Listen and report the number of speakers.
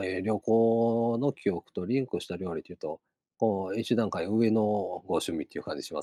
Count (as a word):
one